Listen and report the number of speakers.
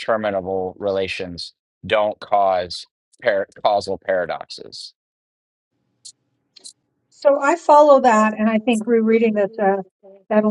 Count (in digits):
2